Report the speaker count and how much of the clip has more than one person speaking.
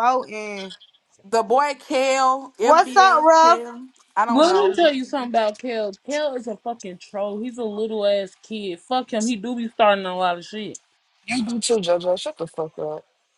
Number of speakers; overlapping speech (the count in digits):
4, about 12%